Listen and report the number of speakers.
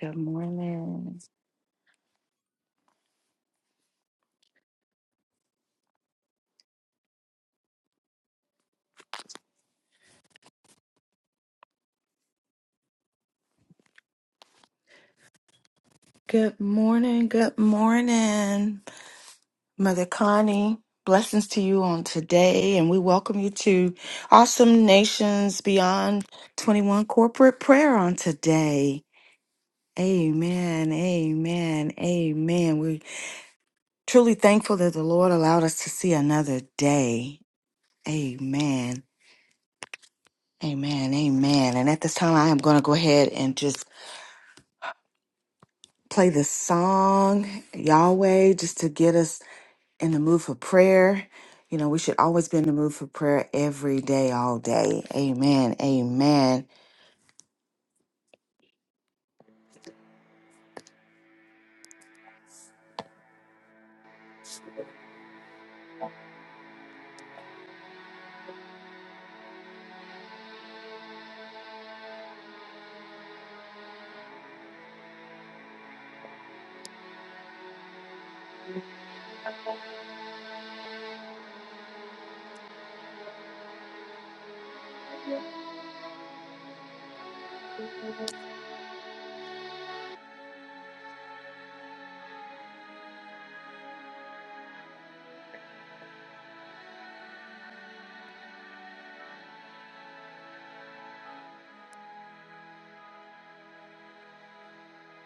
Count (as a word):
one